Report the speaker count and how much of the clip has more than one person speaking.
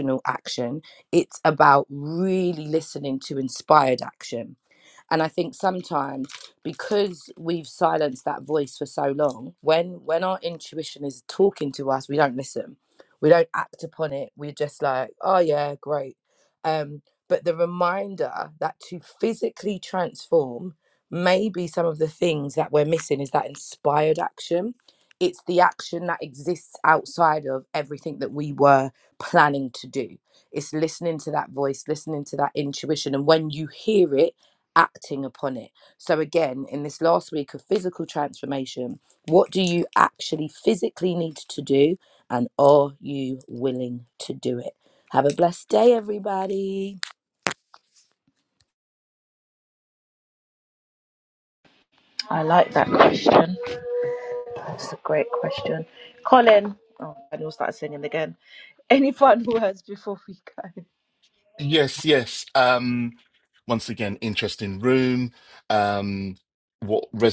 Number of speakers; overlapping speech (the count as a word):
three, no overlap